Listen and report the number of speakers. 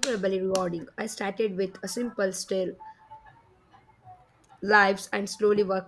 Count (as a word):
one